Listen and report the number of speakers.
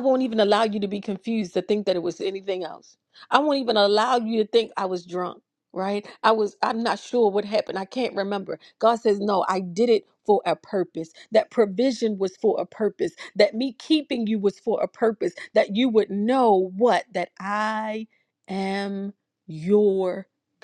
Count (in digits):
1